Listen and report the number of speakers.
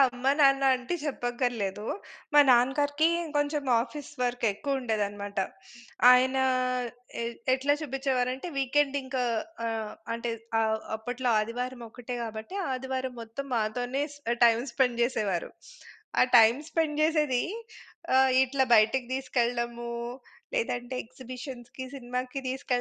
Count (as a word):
one